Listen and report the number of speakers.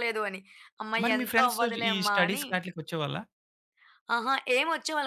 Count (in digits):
2